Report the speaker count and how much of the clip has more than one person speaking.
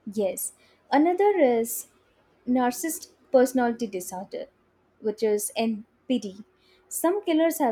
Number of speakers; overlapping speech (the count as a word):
one, no overlap